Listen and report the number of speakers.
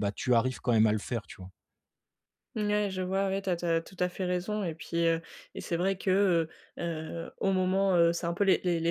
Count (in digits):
2